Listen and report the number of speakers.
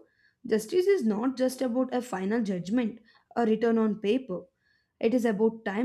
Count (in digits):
1